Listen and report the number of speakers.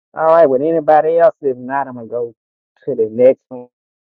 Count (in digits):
1